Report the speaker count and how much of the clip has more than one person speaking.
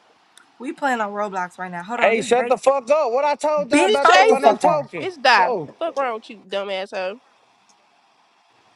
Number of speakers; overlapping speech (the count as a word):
three, about 27%